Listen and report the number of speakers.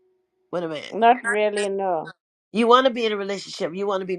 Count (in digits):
2